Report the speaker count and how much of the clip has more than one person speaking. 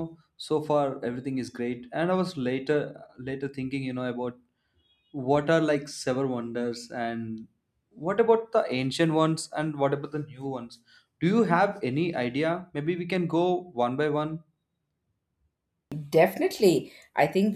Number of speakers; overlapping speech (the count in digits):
2, no overlap